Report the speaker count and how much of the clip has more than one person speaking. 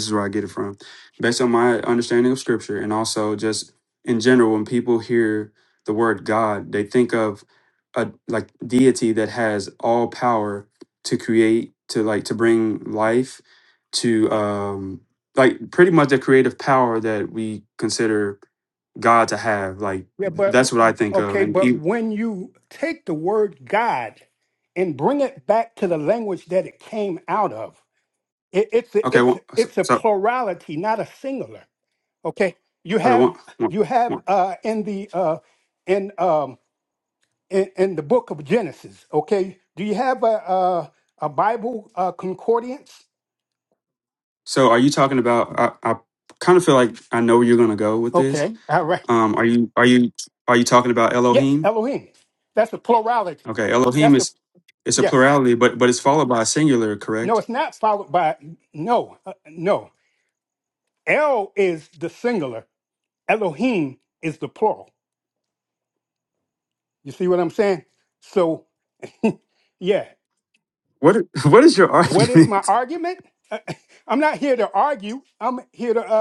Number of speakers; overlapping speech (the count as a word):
two, about 6%